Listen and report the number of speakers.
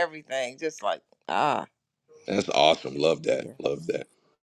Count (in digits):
2